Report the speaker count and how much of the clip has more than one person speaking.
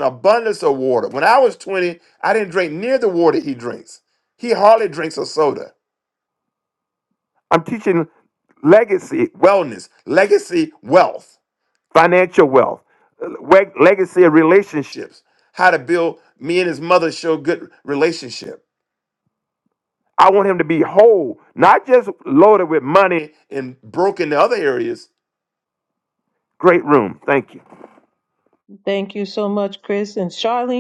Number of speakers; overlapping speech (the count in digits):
2, no overlap